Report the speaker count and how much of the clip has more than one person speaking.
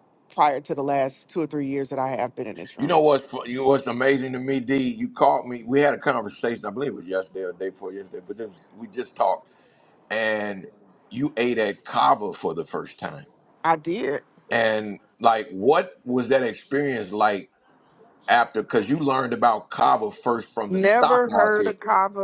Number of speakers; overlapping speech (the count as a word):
two, about 5%